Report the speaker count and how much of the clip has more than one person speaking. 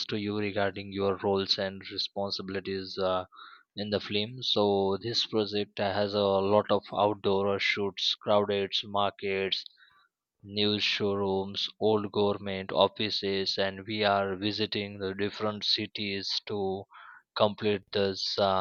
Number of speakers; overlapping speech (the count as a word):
one, no overlap